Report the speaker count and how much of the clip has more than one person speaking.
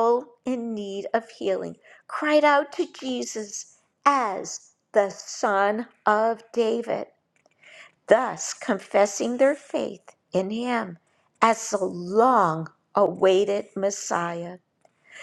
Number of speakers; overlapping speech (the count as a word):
one, no overlap